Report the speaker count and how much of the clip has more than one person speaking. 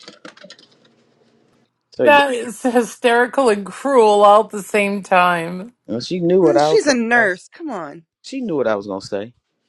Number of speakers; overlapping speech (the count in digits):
3, about 11%